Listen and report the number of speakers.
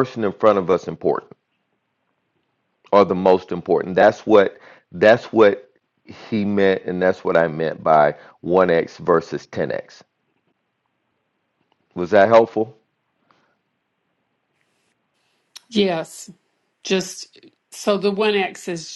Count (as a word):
two